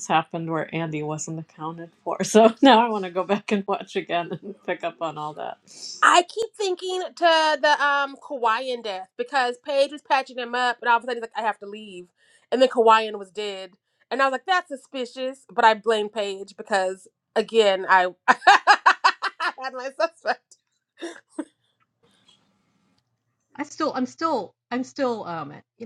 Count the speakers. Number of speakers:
three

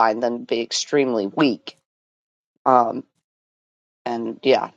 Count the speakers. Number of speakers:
one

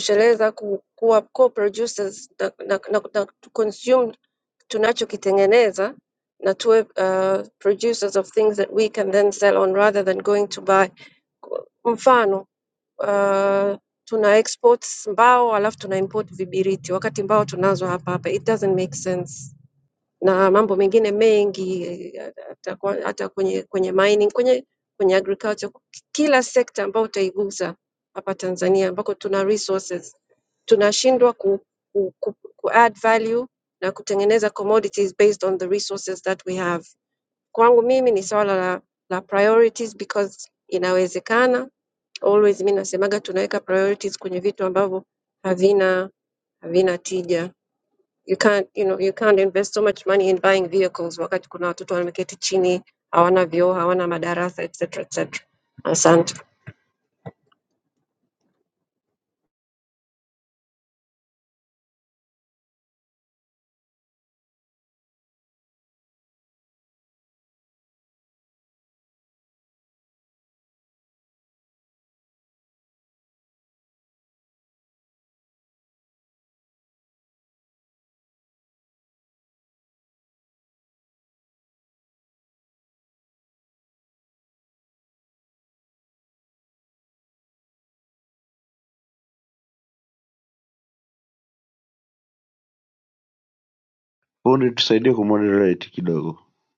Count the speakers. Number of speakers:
two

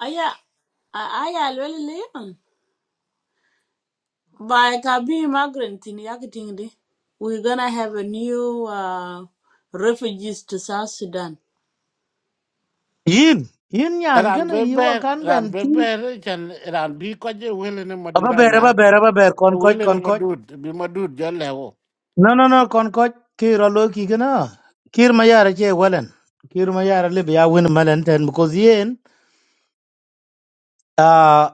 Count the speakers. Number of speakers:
three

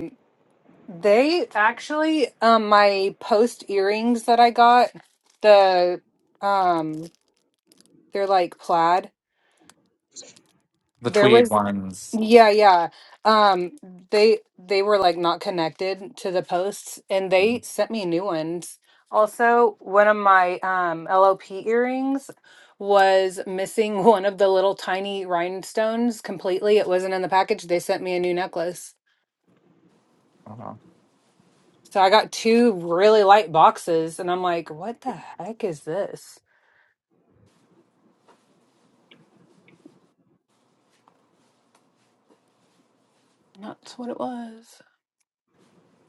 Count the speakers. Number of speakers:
two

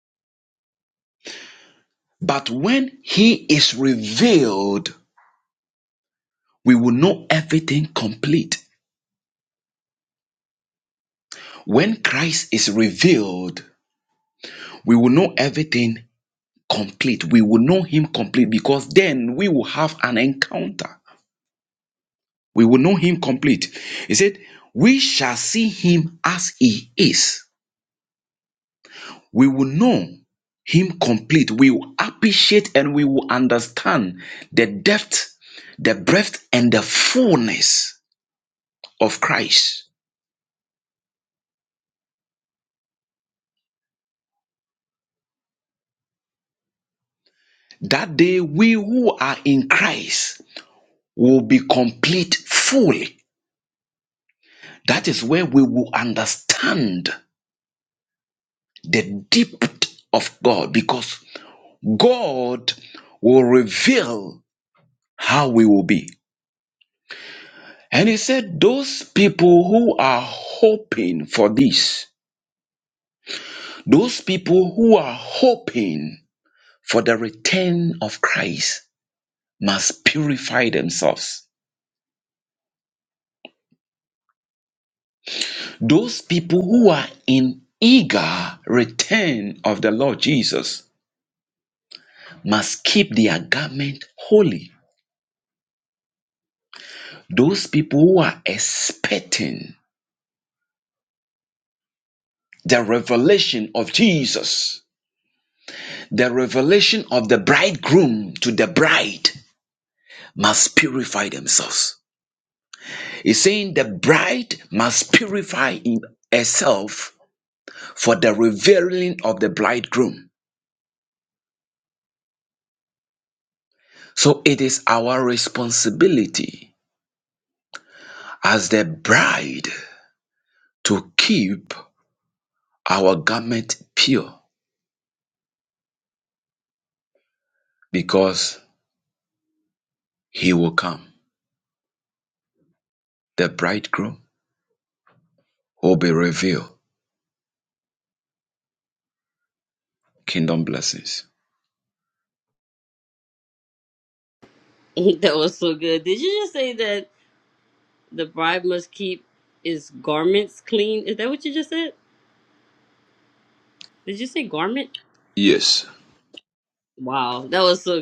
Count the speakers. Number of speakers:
two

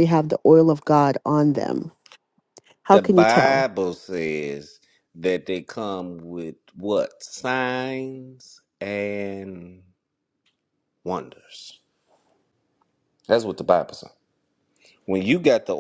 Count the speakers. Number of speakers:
two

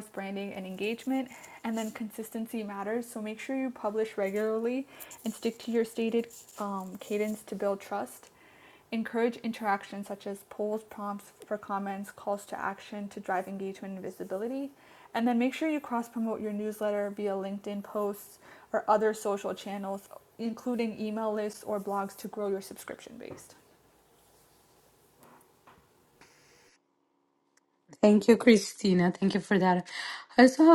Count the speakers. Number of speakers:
two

